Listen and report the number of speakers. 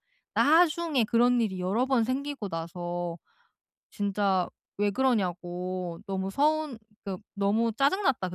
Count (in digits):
1